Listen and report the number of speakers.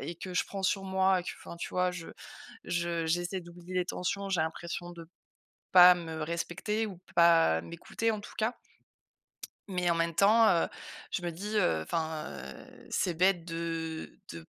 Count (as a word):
one